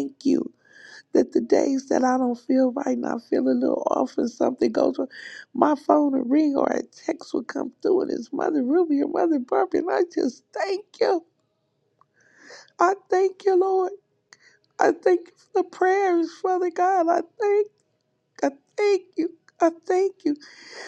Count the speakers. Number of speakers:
1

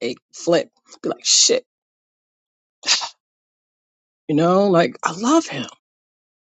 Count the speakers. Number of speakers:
1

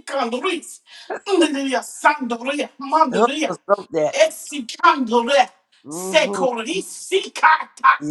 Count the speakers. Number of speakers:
2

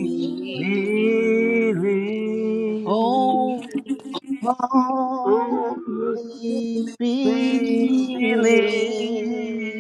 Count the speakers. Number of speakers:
3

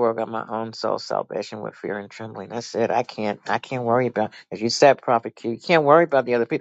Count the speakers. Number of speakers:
1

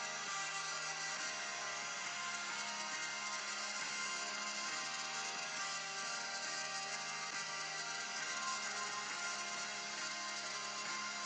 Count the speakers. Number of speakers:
0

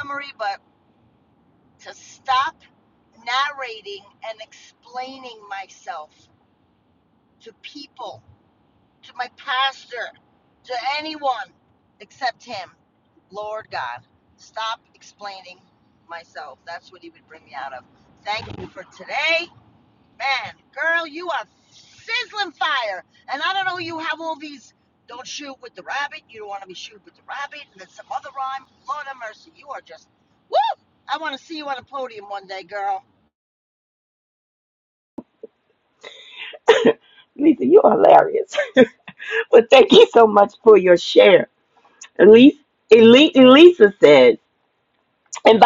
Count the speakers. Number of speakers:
2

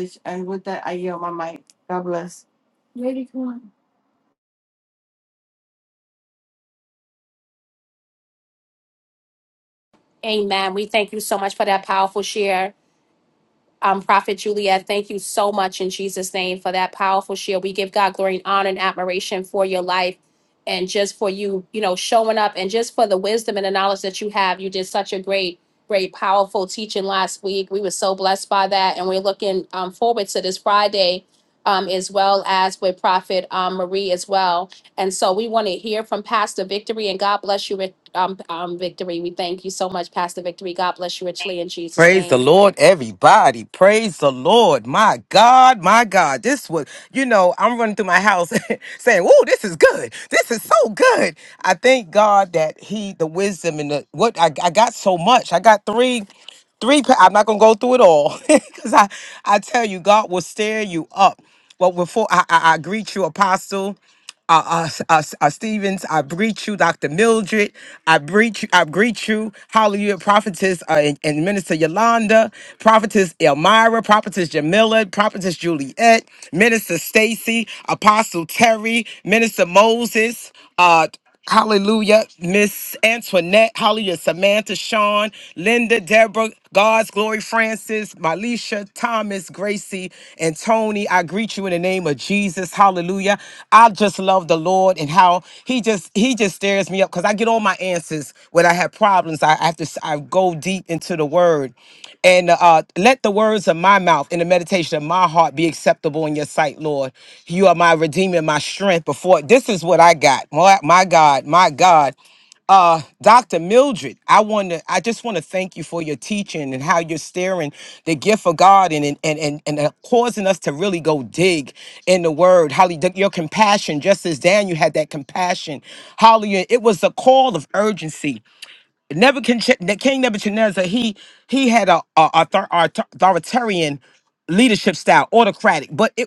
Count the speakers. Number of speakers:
3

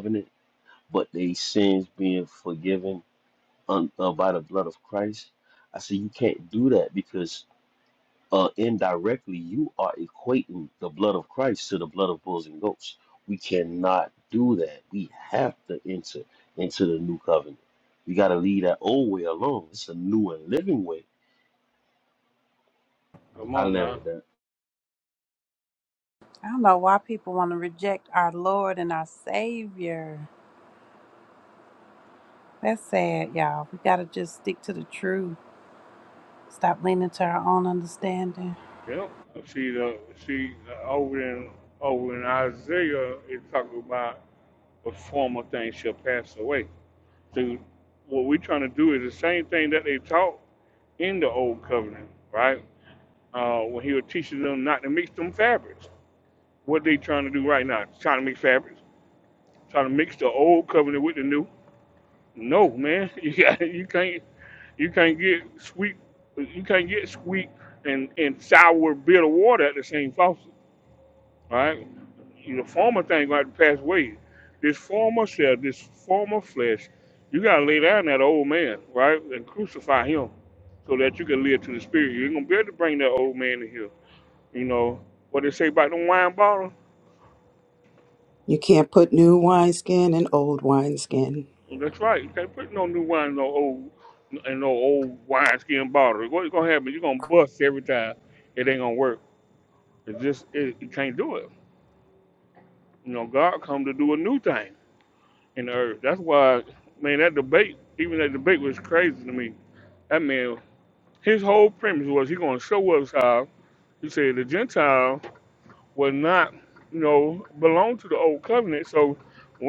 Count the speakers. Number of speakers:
4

